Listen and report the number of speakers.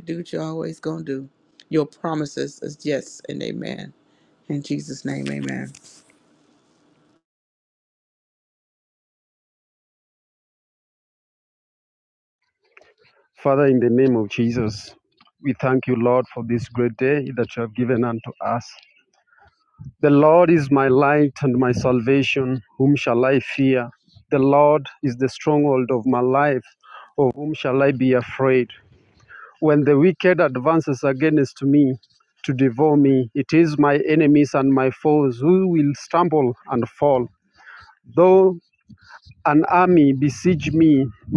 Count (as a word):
two